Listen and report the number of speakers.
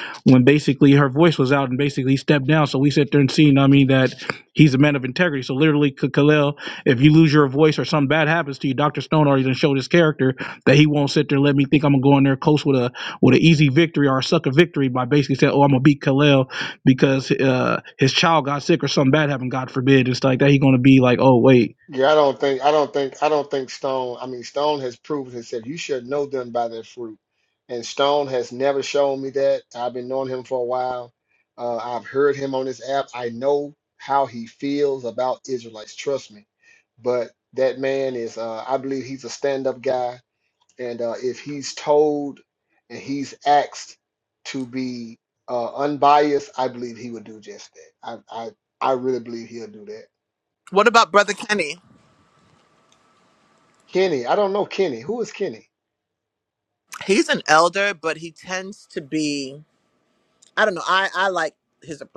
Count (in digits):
3